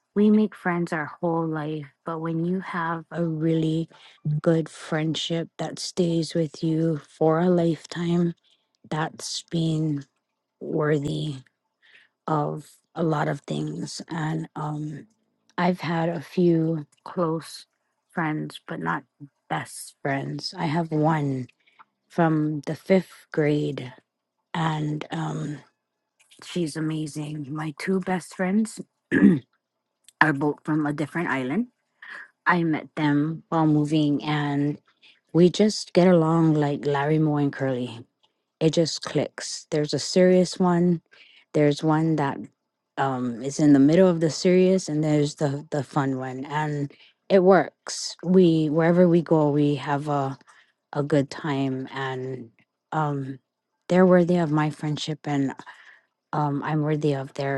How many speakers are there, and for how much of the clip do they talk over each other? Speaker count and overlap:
one, no overlap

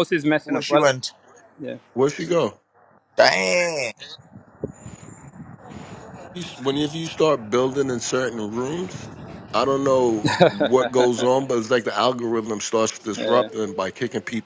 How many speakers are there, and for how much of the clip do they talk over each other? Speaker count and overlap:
three, about 5%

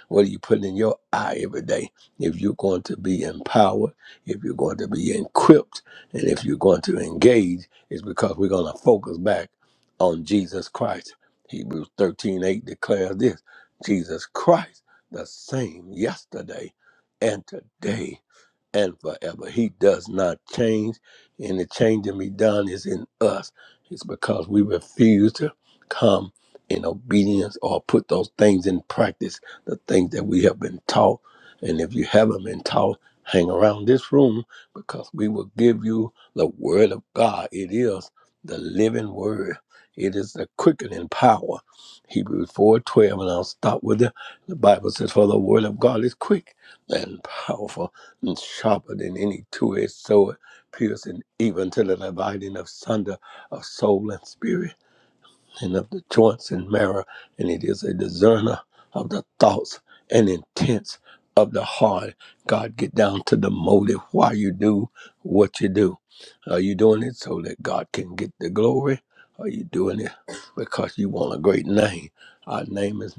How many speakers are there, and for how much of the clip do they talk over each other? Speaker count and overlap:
one, no overlap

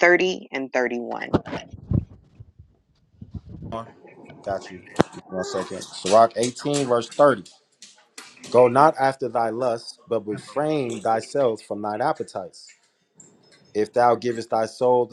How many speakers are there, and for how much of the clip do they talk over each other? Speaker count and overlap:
two, no overlap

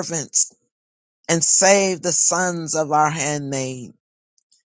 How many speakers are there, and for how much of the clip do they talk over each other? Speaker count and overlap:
one, no overlap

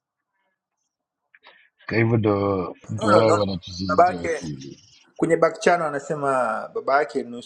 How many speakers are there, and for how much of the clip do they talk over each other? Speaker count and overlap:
two, about 14%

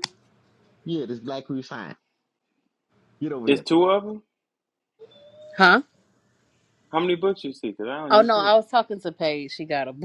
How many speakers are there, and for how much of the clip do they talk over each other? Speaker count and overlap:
three, about 6%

